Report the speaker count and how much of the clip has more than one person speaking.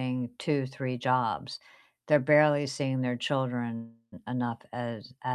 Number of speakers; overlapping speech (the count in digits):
1, no overlap